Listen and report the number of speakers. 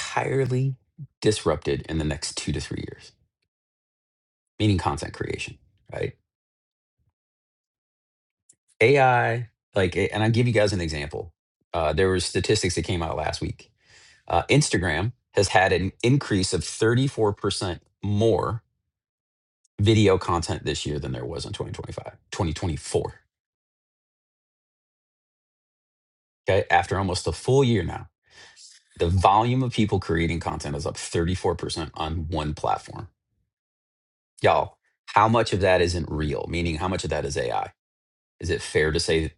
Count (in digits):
1